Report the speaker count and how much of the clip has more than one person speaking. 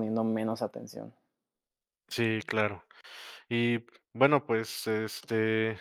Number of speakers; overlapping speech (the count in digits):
2, no overlap